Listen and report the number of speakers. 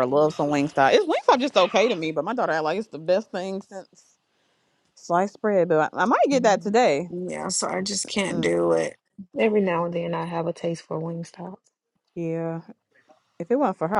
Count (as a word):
three